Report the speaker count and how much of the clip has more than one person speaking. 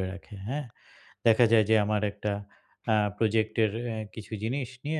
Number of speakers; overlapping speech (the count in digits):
1, no overlap